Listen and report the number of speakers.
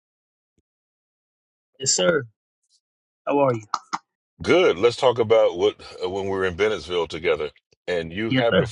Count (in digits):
2